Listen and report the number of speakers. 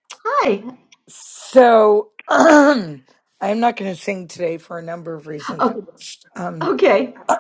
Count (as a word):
two